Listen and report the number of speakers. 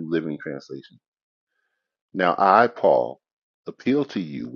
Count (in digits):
1